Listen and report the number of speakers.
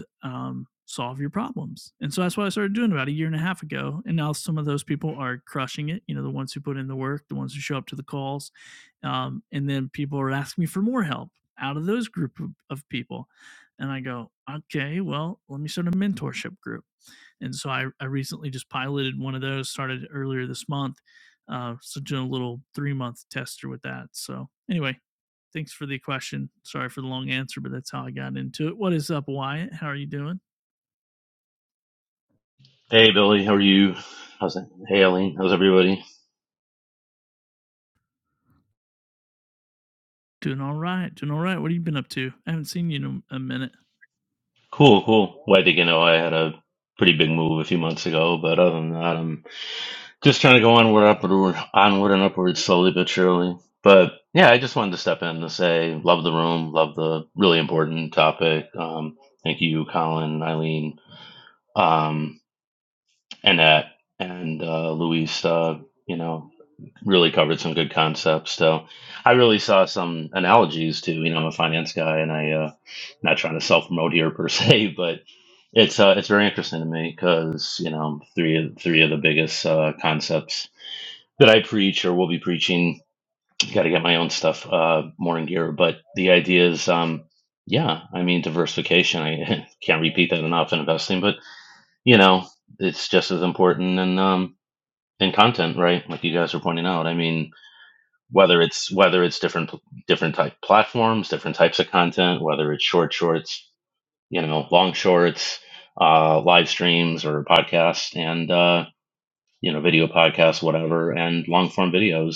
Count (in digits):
2